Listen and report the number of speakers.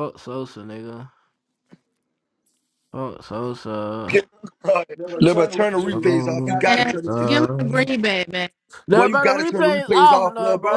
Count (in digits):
3